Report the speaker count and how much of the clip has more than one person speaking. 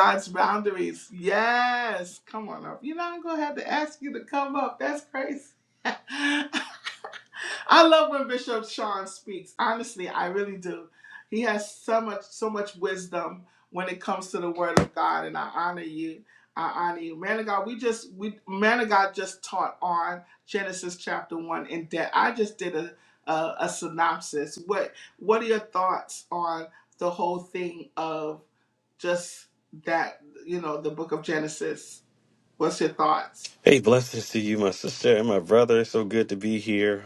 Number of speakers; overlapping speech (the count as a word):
two, no overlap